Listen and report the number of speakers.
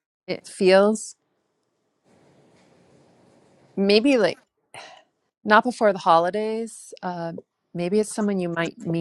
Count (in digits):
1